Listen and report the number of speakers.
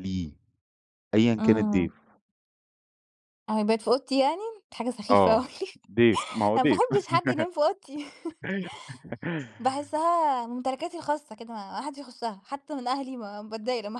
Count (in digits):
2